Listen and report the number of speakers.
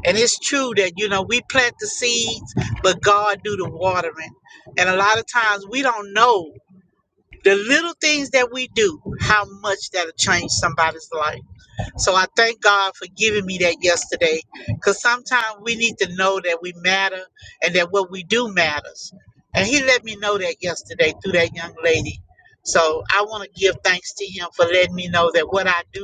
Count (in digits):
1